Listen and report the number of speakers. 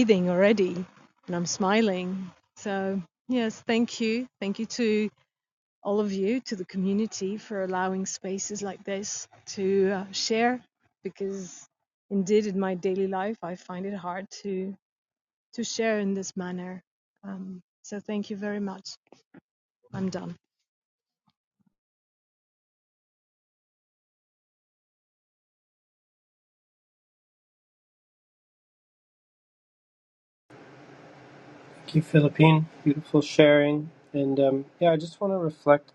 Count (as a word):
two